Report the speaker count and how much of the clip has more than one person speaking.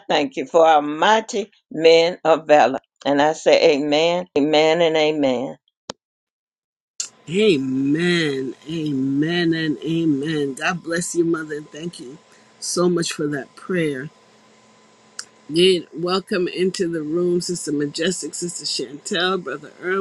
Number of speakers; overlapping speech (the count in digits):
2, no overlap